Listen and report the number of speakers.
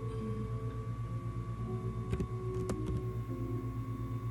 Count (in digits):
0